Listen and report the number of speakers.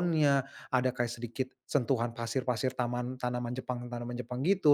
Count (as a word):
one